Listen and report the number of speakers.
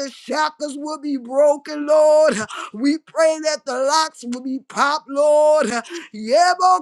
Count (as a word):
one